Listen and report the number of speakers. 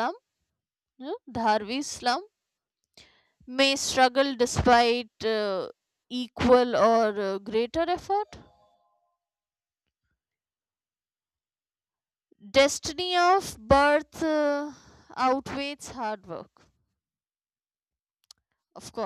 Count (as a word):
one